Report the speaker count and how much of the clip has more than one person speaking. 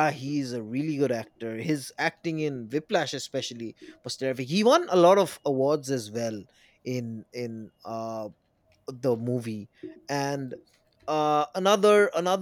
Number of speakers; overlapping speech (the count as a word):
one, no overlap